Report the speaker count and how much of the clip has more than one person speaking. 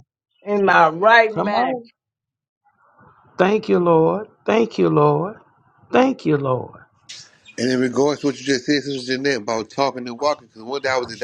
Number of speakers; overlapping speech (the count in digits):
3, about 4%